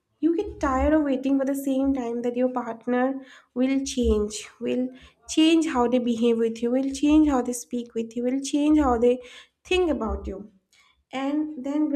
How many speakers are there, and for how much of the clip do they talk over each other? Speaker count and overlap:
1, no overlap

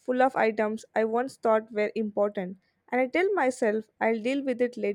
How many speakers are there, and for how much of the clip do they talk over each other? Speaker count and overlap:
1, no overlap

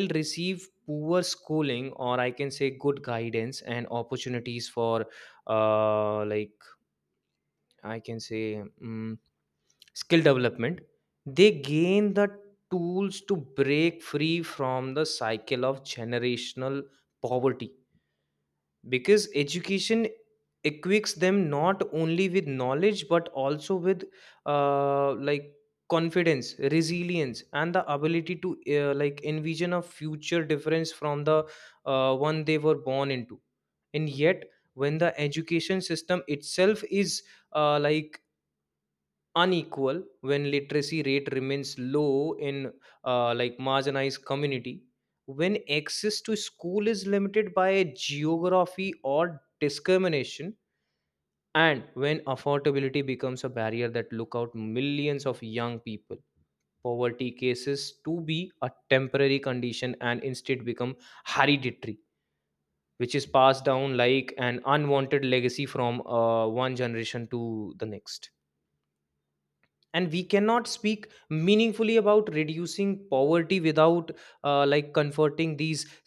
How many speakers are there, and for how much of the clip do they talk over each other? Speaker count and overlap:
1, no overlap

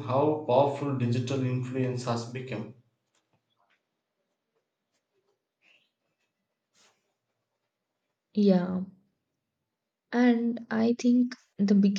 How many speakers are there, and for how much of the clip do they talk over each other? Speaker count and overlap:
2, no overlap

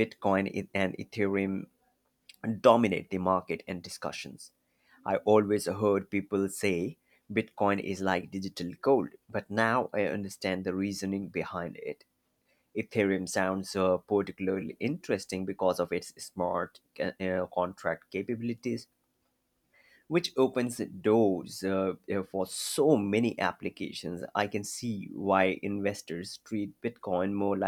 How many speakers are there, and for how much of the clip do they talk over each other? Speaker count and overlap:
1, no overlap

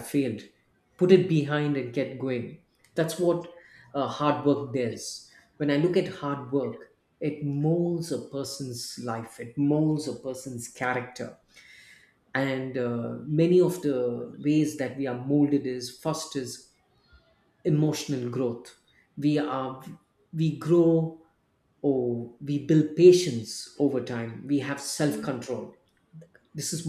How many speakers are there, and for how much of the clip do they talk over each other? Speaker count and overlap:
1, no overlap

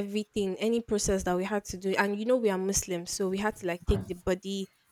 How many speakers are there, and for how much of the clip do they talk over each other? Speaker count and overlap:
1, no overlap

